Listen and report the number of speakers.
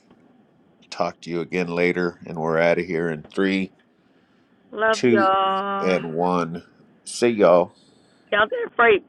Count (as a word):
two